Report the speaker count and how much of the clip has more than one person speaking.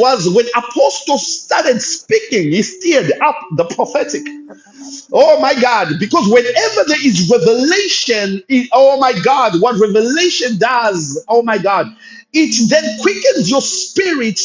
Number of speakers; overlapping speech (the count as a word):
one, no overlap